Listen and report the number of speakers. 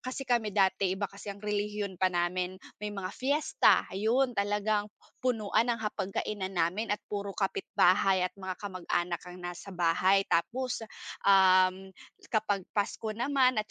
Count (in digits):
1